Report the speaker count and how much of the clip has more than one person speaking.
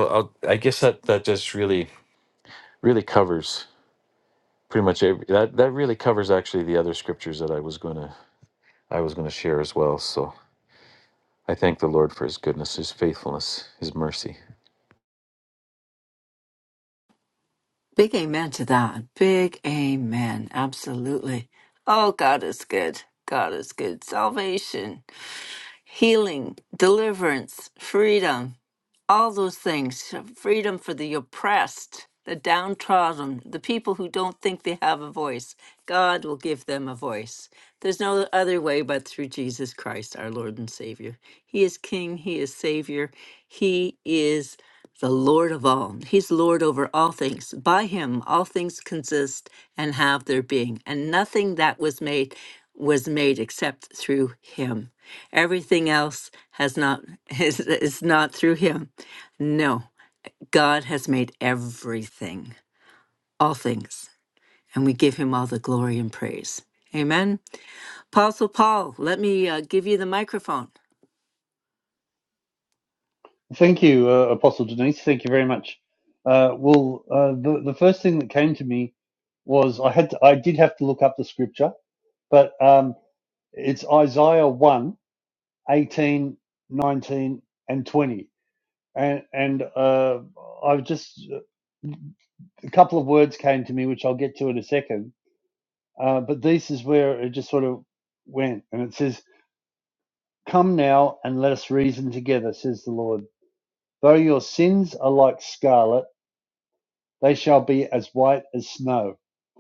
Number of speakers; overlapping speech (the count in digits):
3, no overlap